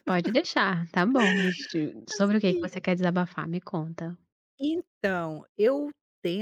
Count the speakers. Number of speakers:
2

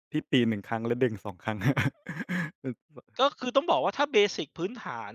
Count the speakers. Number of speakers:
2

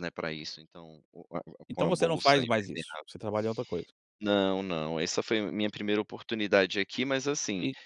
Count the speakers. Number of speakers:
2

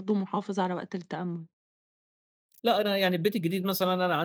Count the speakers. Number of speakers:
2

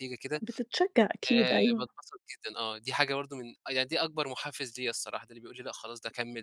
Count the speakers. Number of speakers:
2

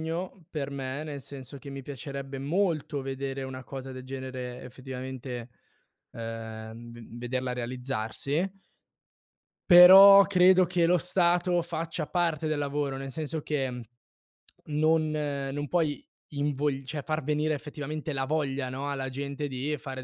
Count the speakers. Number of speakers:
1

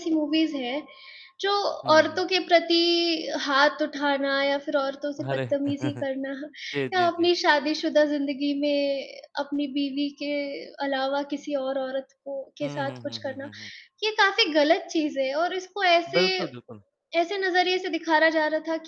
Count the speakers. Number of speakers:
2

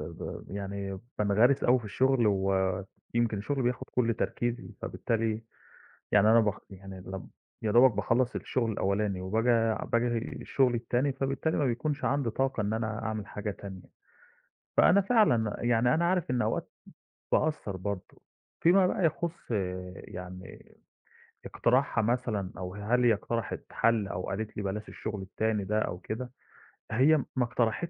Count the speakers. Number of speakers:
1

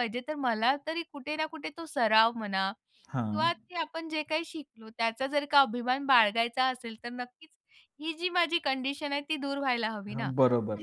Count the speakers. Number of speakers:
2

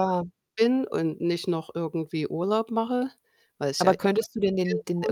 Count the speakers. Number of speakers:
2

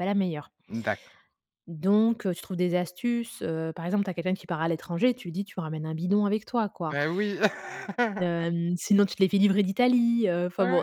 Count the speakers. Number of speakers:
2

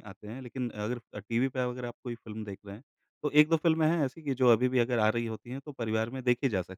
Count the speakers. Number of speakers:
1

